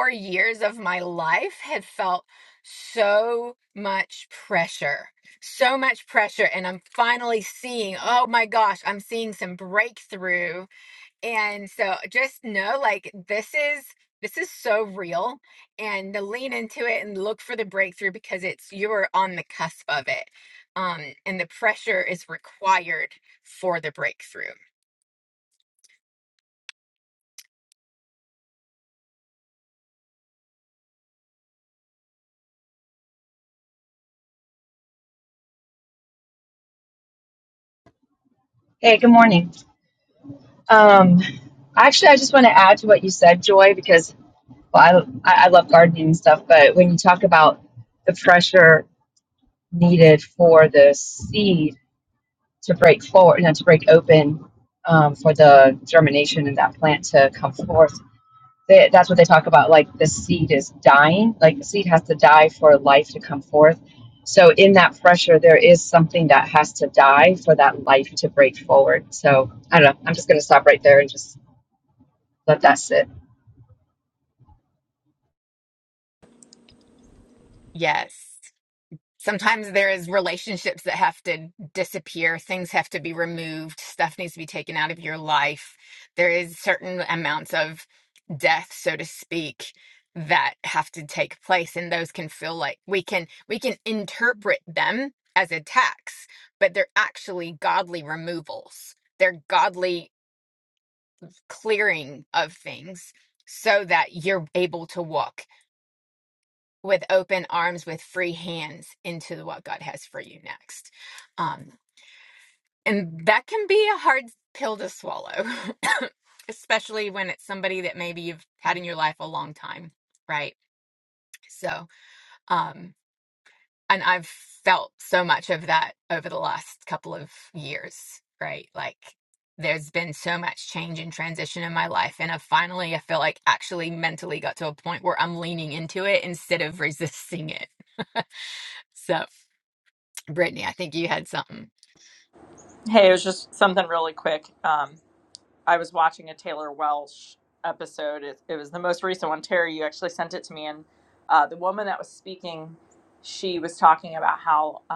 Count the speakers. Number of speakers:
3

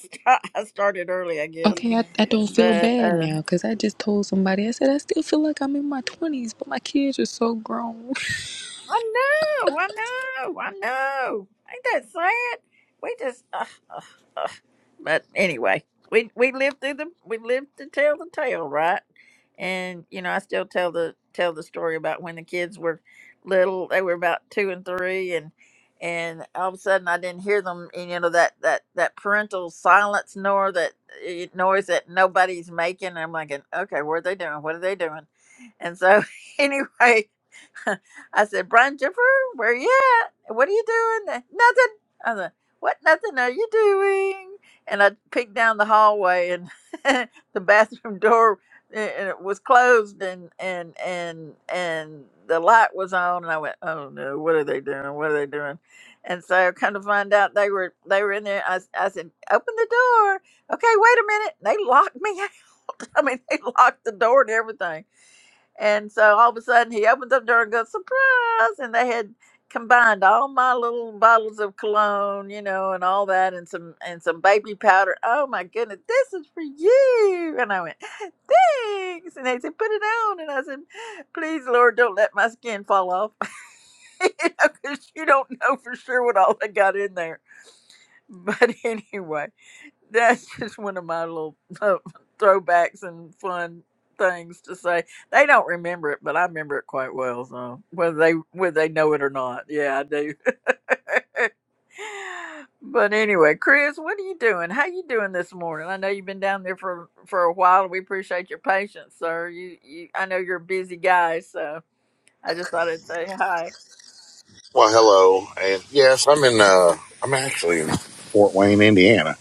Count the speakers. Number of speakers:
3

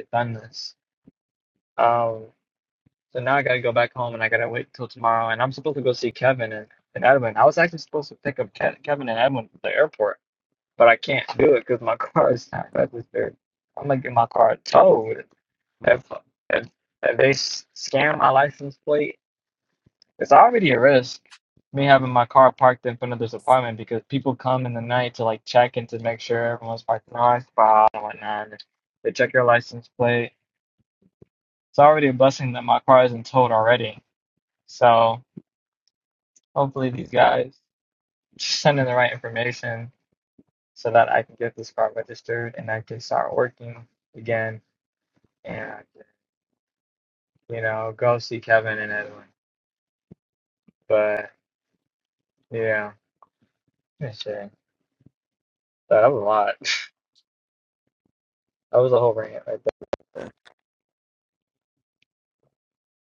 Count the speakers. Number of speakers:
1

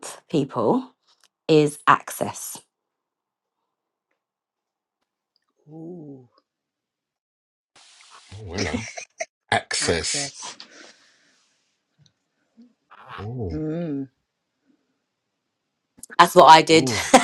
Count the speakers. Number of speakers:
3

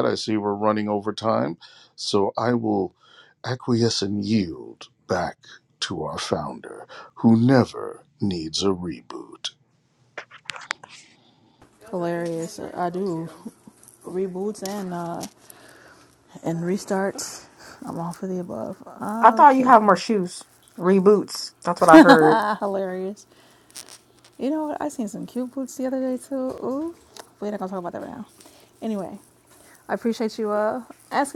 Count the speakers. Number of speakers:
3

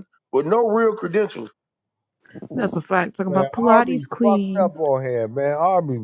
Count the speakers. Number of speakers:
3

